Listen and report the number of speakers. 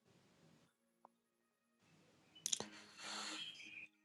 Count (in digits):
0